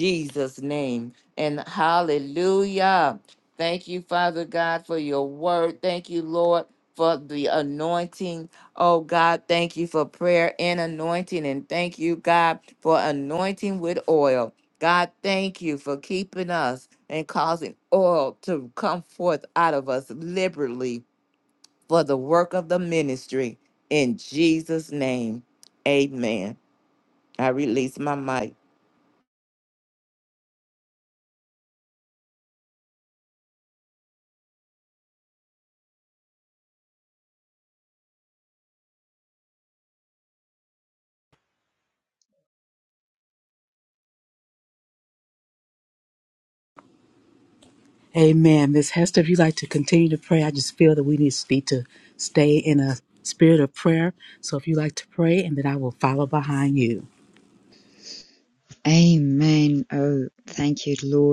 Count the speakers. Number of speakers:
three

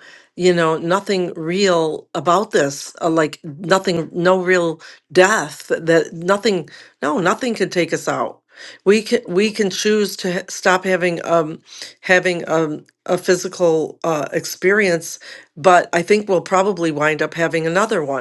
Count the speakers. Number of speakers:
one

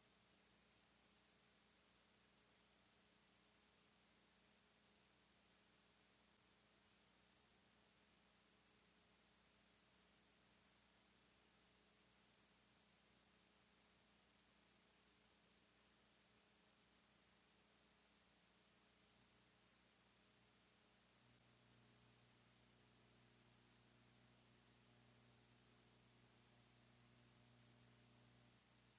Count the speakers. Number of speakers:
zero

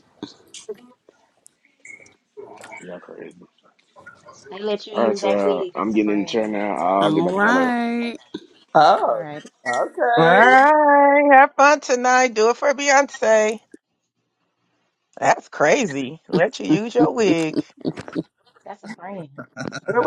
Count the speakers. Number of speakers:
five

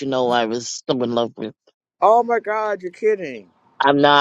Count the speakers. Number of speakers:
two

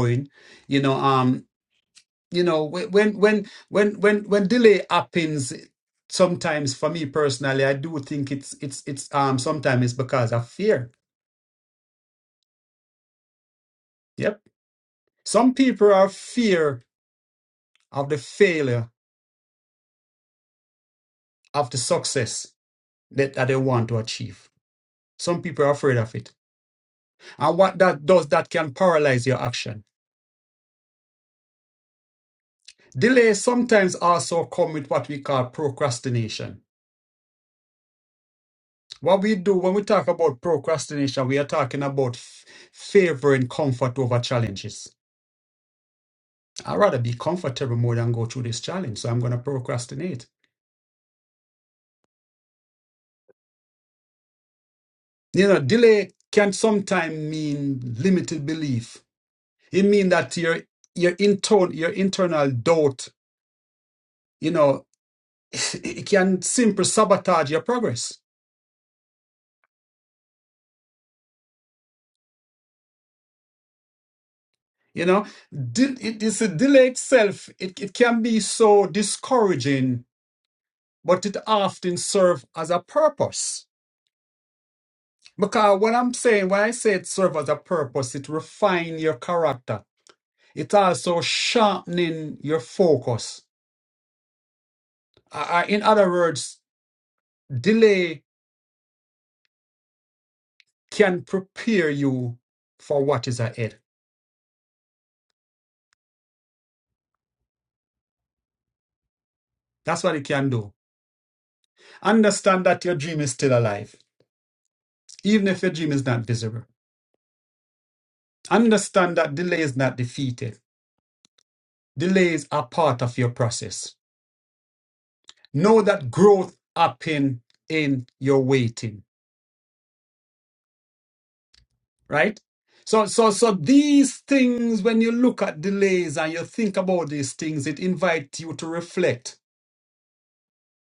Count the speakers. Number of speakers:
one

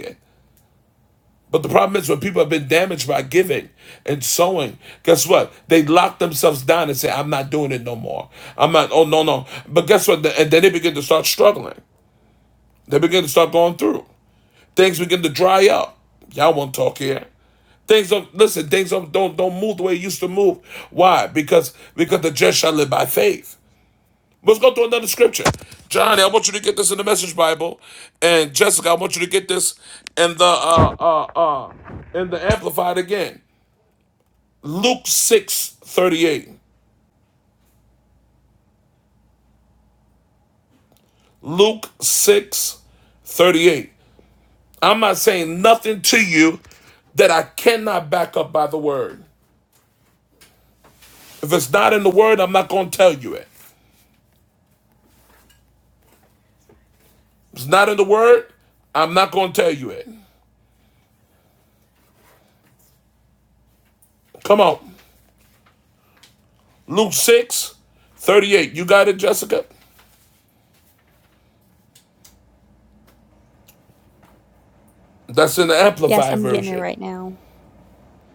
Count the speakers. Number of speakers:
two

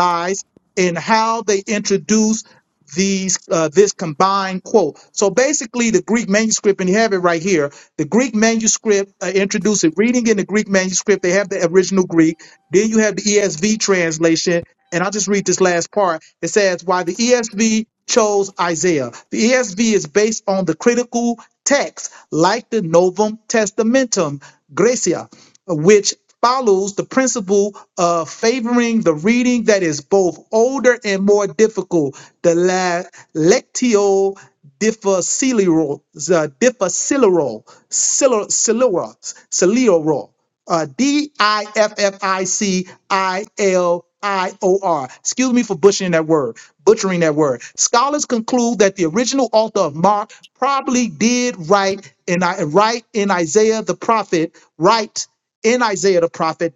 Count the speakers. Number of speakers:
one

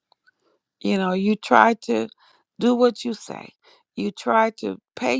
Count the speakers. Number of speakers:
one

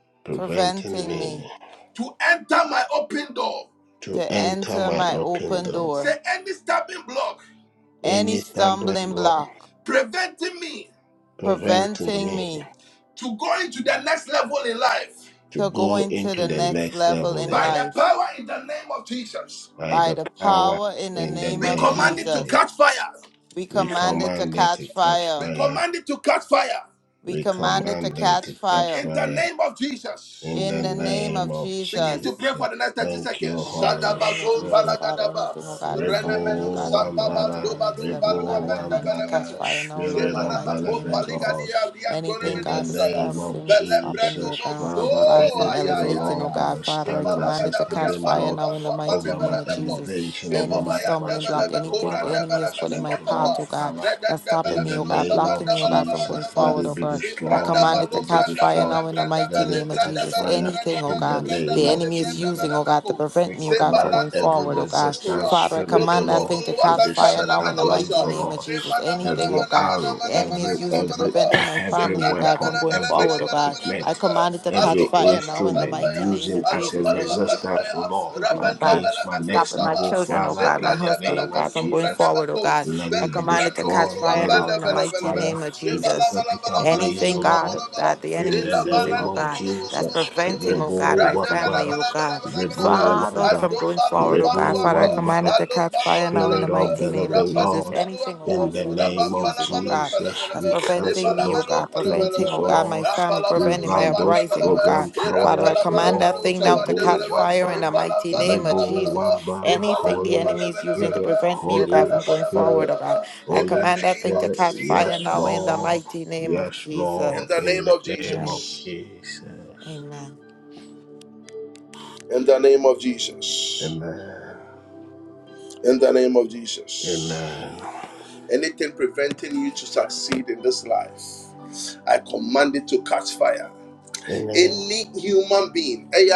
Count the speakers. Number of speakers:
three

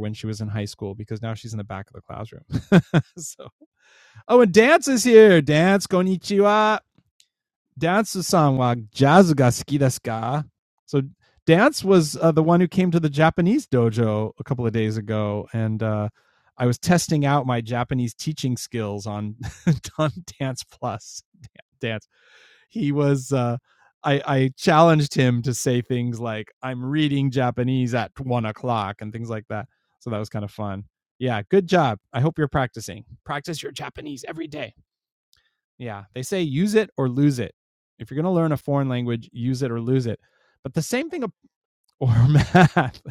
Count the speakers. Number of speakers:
one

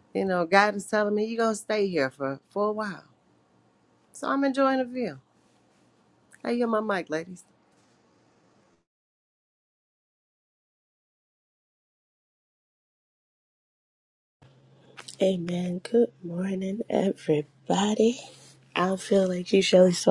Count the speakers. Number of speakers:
two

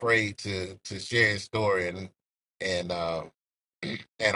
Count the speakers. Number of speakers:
one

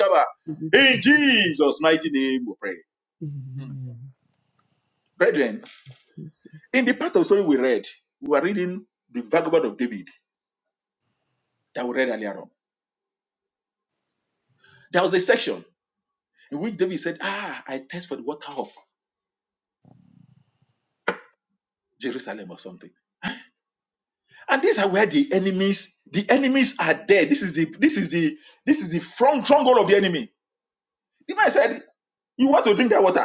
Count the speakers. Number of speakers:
two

